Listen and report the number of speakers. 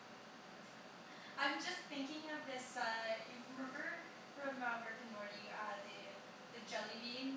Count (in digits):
1